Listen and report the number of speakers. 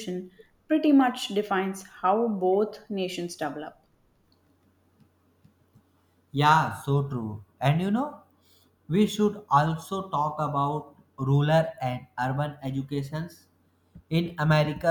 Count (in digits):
2